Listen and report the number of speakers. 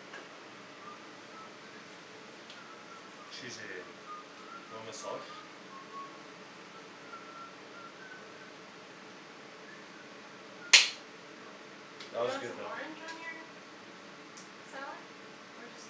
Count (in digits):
2